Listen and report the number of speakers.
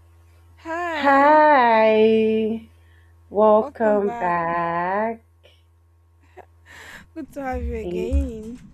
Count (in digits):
2